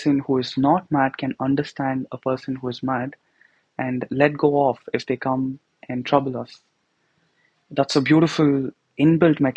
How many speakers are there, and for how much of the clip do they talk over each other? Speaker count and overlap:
one, no overlap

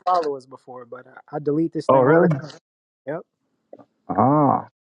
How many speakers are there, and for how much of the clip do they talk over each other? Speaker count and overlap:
two, about 11%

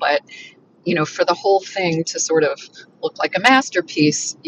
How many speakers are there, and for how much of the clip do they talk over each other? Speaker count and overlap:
one, no overlap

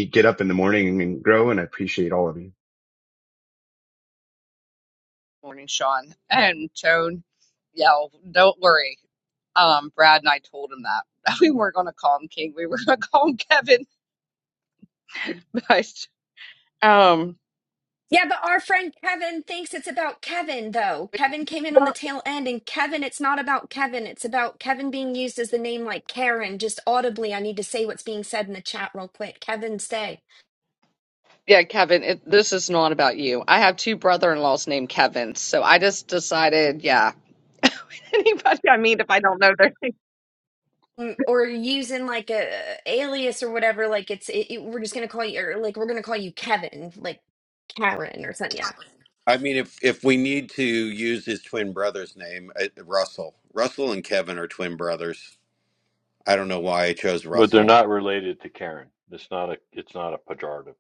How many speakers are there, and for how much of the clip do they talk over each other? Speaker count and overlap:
five, about 1%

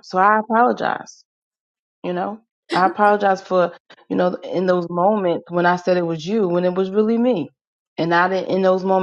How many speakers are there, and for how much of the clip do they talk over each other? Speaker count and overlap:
one, no overlap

